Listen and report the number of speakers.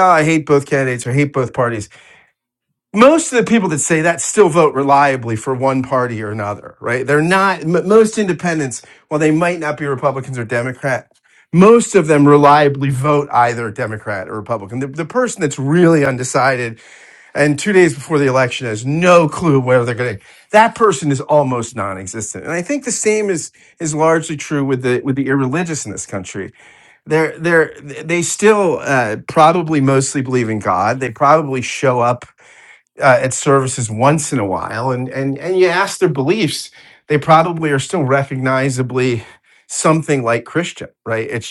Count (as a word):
one